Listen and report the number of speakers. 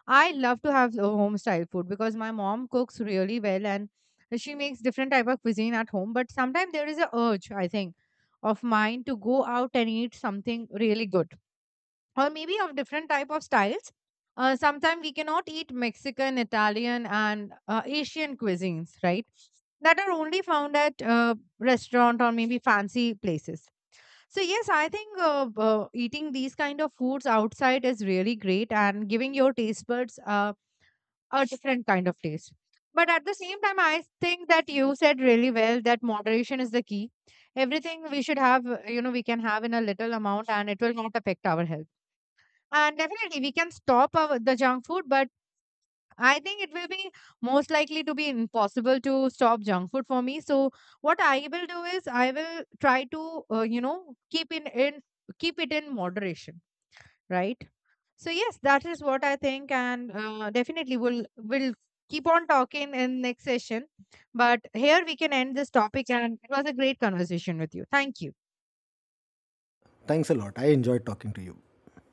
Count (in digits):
2